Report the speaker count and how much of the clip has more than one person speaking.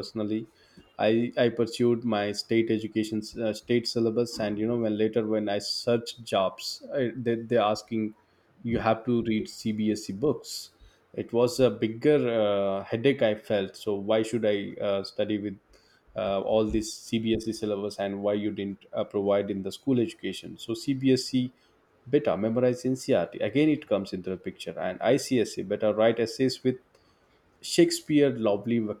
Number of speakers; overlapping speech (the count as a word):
one, no overlap